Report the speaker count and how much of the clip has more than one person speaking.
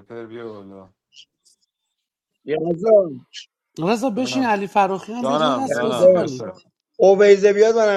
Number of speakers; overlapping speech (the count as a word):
three, about 19%